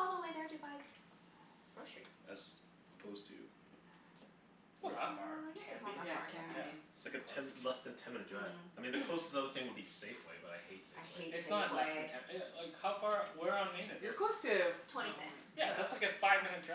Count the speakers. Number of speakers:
4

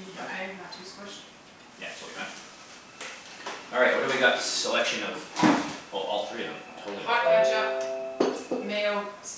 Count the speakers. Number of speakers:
2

